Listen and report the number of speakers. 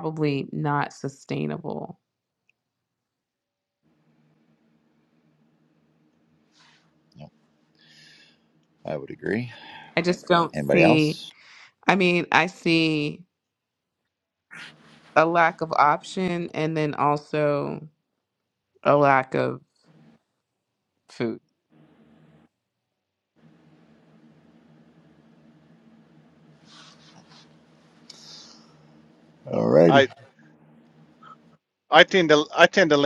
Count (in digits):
3